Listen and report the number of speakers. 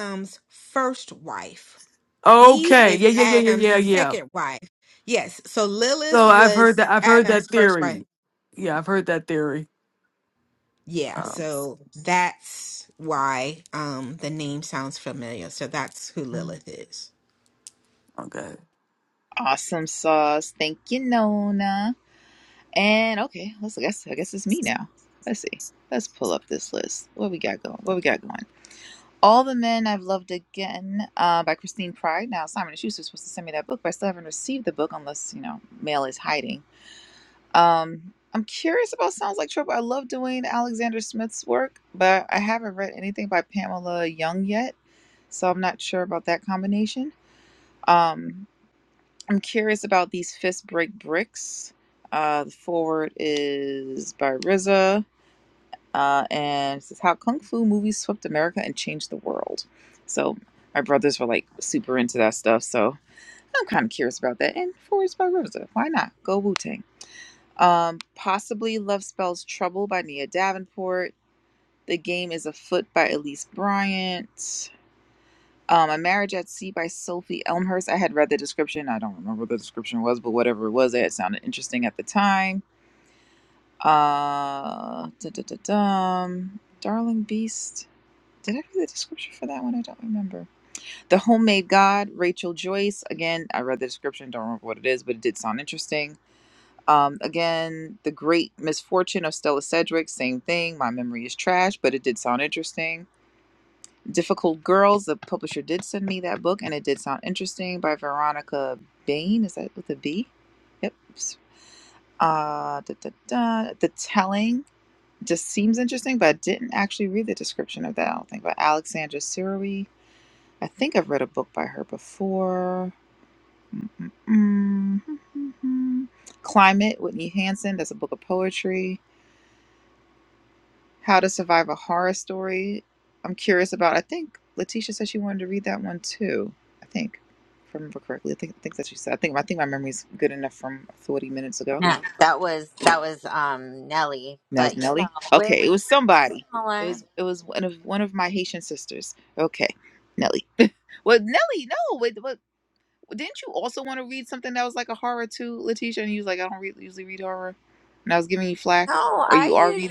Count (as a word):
four